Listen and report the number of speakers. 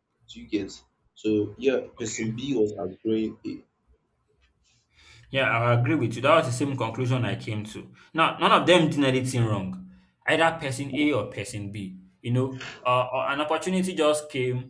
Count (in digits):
2